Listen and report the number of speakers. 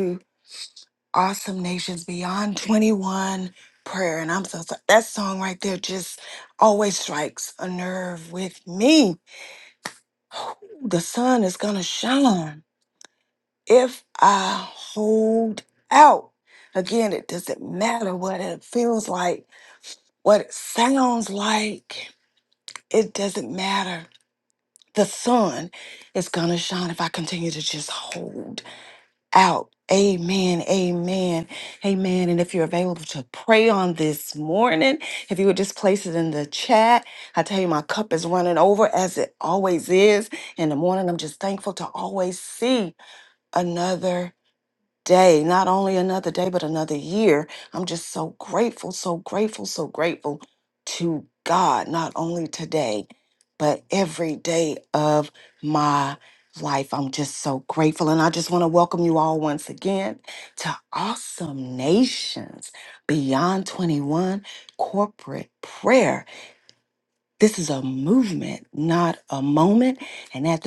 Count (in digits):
1